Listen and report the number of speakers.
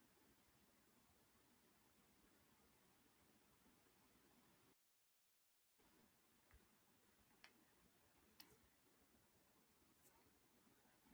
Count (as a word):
zero